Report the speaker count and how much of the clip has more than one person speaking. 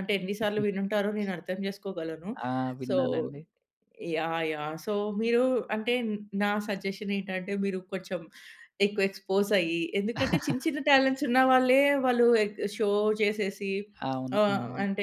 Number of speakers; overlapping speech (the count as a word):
two, about 6%